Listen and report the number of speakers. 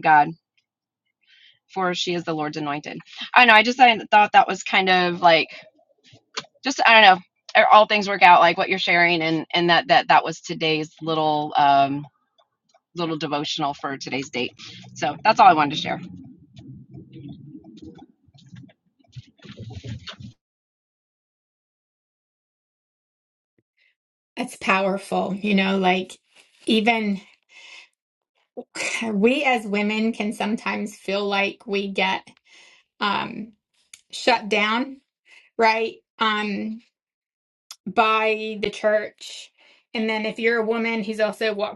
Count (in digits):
2